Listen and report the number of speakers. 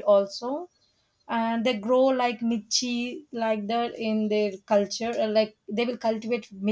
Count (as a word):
one